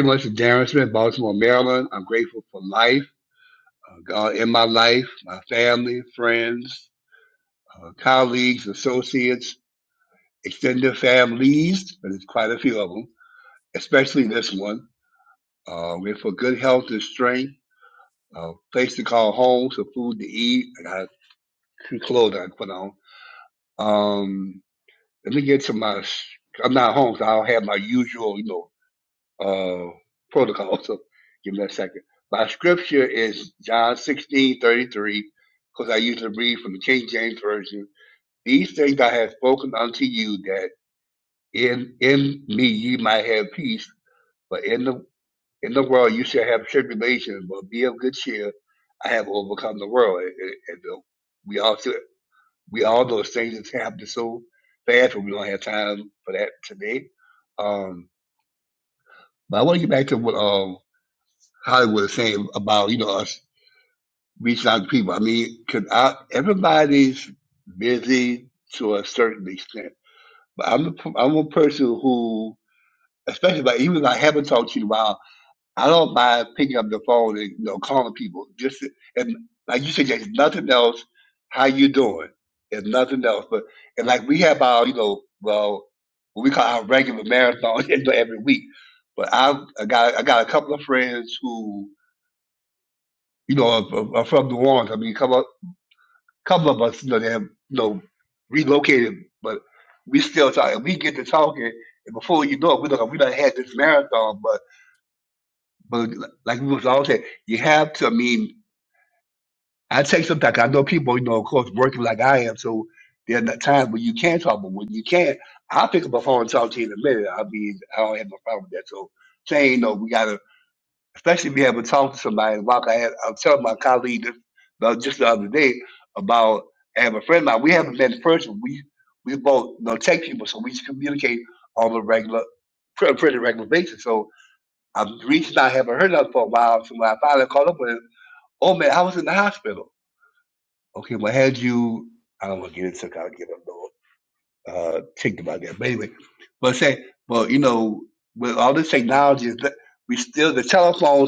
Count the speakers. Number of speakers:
one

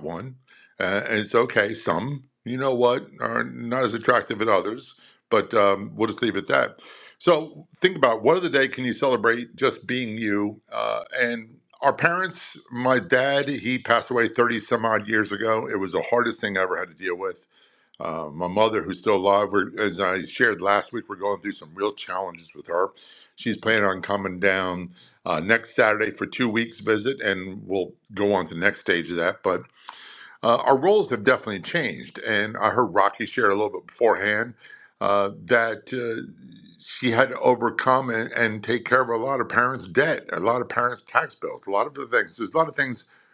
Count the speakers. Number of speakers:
one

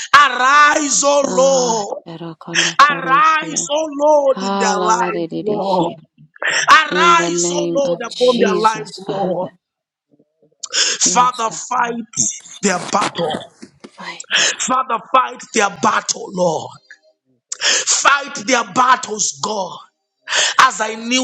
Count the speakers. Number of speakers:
two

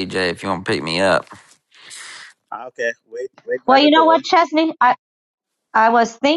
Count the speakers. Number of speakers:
three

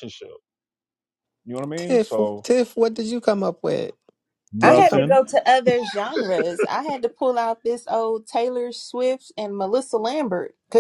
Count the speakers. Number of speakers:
three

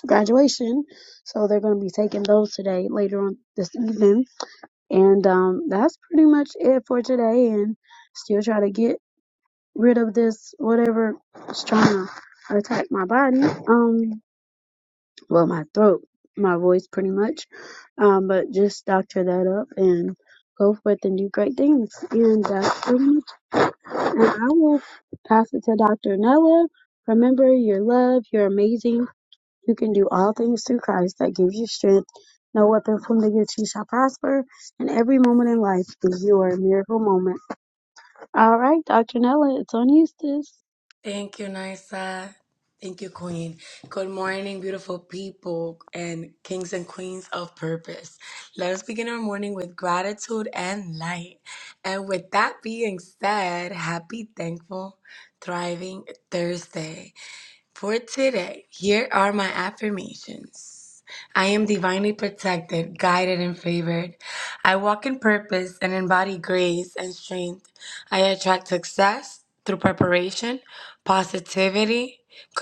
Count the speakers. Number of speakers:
two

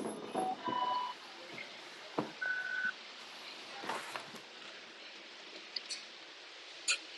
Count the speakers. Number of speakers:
zero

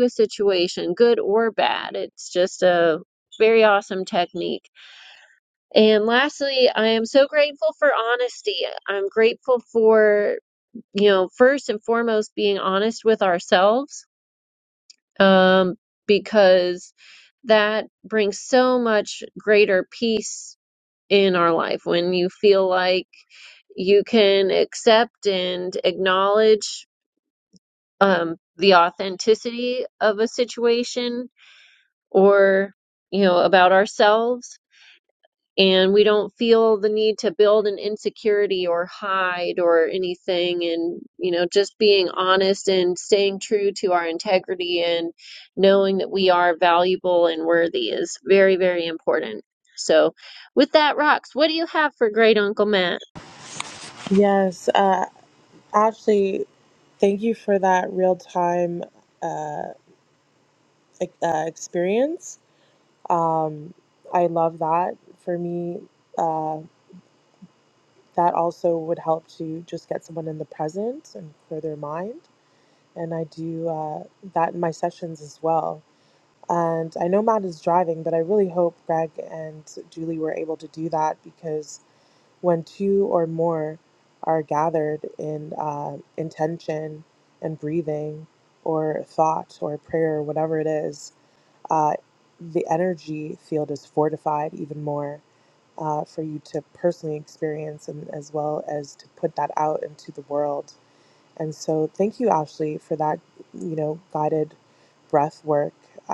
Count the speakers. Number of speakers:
two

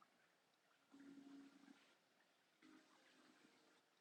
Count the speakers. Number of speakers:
zero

